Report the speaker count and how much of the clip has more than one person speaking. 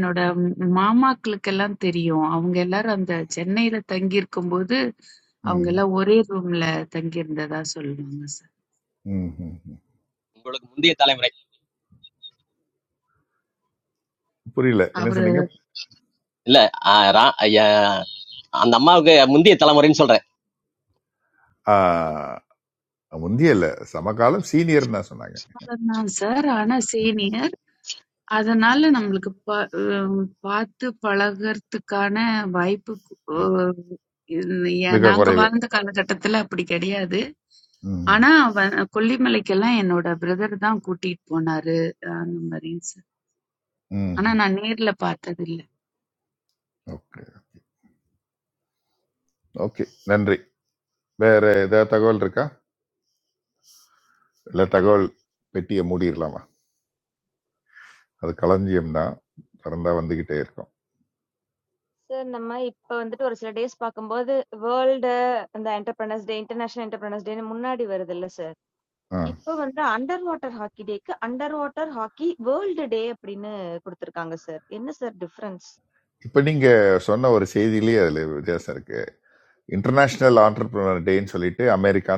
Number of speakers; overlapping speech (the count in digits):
4, about 2%